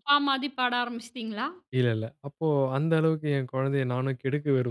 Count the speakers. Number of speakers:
2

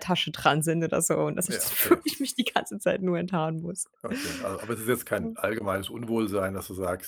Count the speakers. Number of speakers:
2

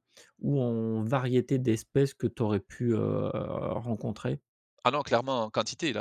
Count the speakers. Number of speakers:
2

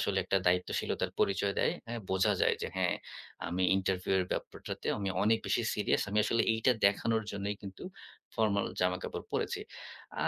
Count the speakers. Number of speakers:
1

